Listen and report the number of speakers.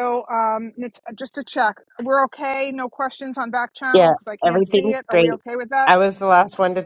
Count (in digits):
2